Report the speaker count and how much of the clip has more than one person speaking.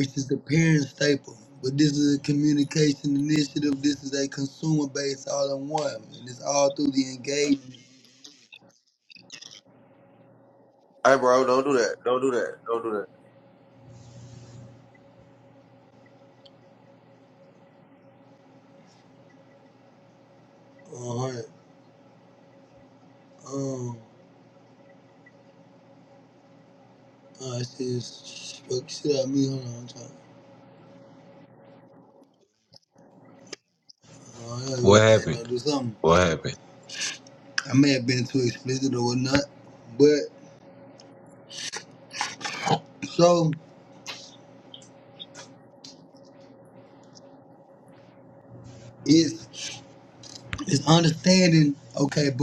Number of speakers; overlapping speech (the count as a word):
three, about 1%